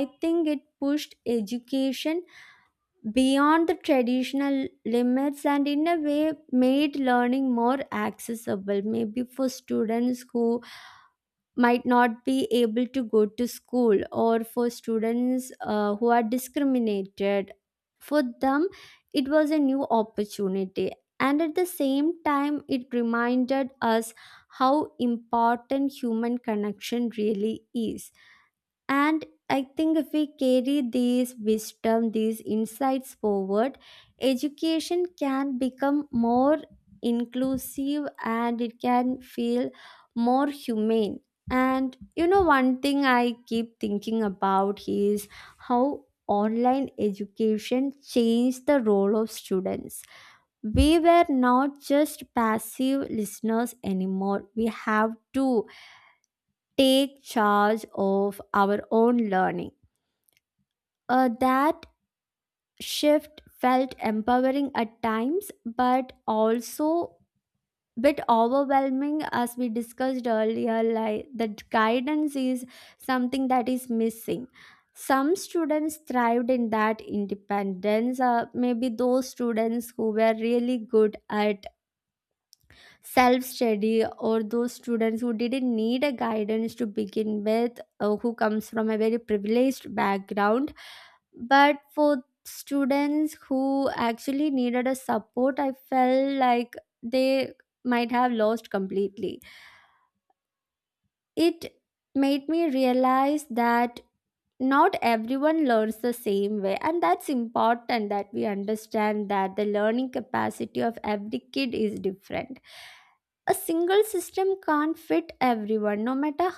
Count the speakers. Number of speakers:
1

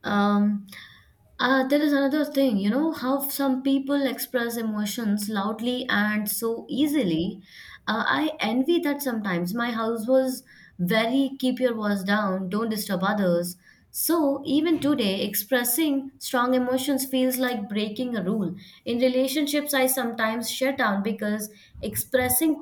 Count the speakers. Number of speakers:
1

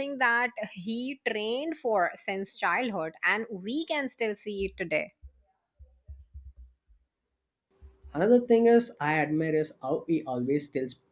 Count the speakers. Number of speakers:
2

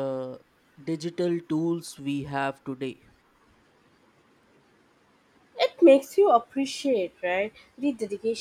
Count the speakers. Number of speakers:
2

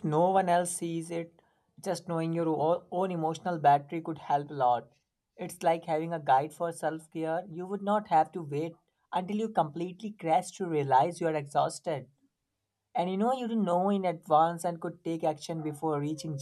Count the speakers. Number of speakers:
1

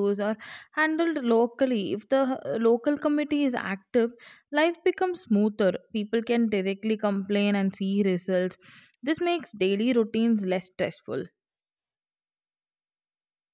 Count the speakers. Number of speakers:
1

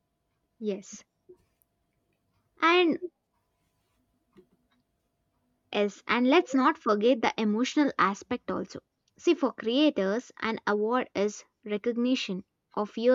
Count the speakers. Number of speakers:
1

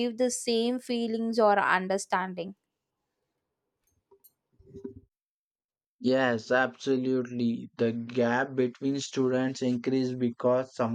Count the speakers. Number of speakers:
2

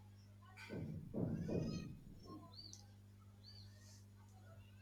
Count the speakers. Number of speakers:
0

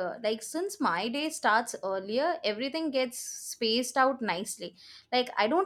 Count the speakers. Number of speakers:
1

